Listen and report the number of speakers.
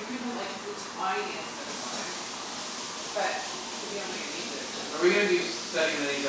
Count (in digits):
2